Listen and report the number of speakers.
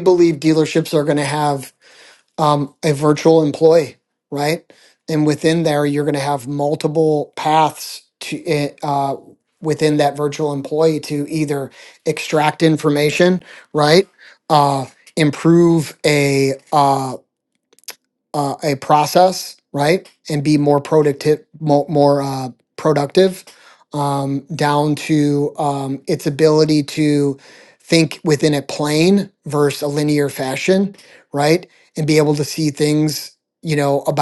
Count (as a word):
one